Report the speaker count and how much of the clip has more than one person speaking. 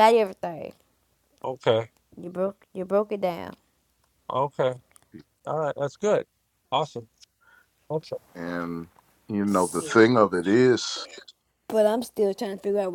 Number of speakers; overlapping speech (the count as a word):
three, no overlap